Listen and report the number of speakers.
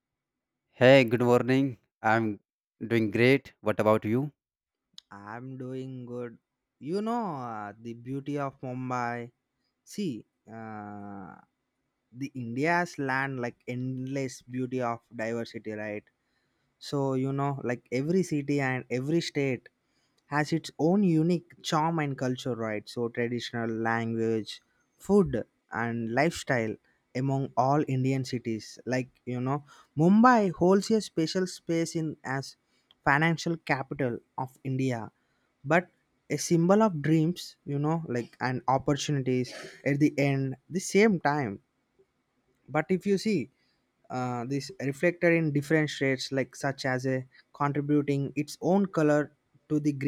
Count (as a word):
two